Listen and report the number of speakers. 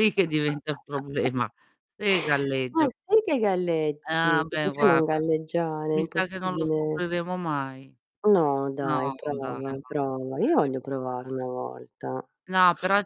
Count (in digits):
2